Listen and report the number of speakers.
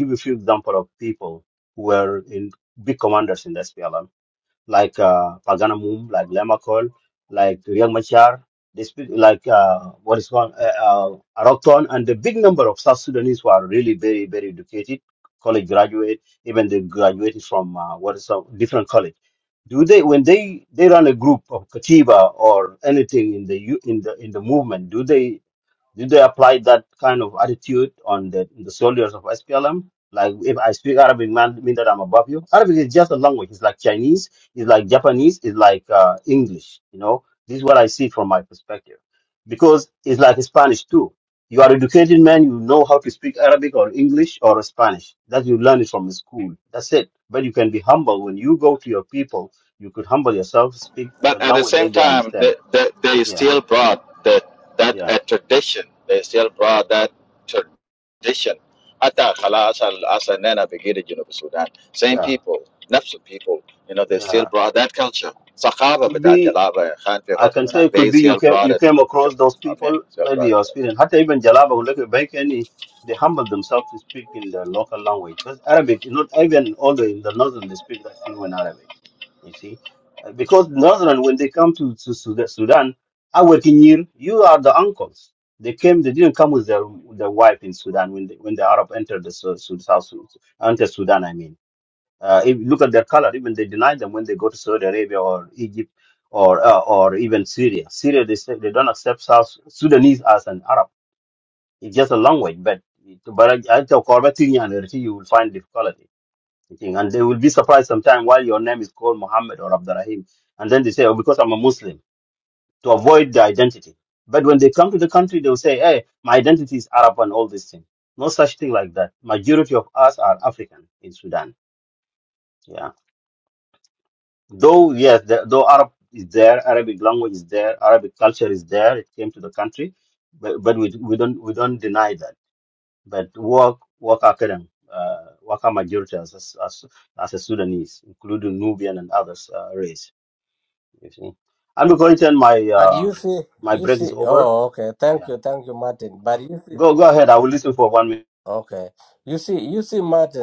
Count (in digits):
3